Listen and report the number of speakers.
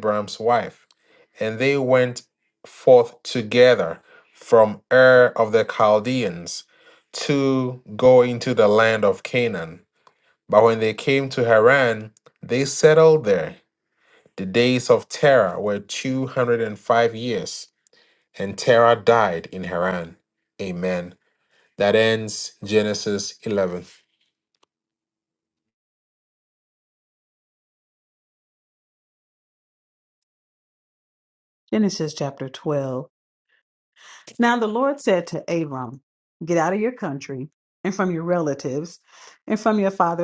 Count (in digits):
2